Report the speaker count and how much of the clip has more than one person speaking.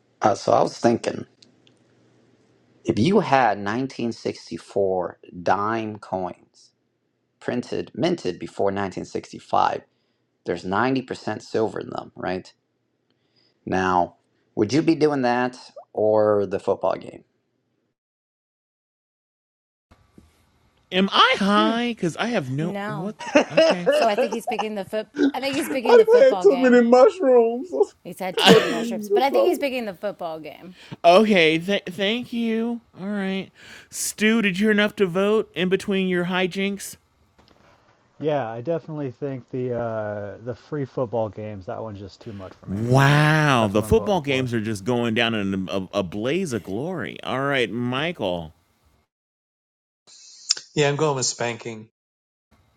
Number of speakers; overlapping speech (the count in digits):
6, about 7%